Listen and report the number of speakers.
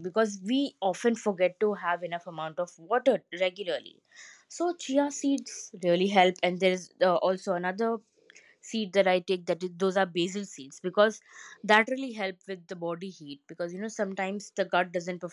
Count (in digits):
1